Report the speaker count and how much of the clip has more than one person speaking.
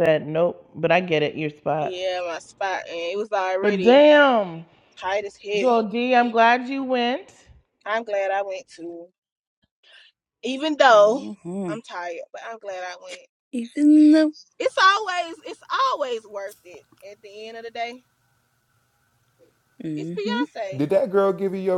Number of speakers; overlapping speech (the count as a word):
four, about 9%